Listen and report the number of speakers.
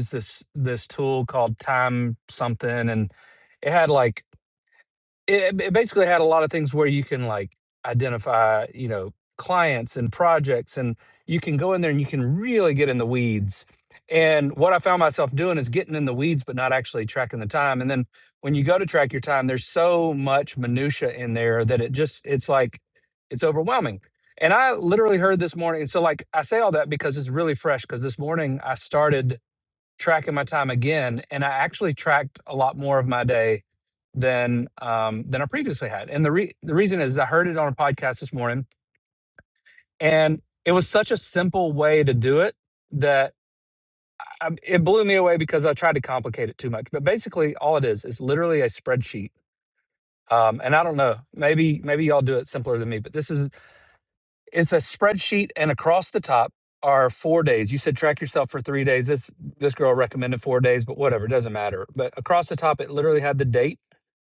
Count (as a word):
one